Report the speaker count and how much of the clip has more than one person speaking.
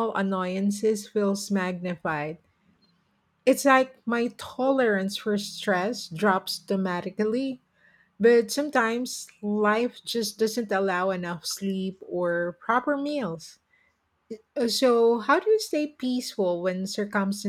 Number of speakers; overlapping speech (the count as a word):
one, no overlap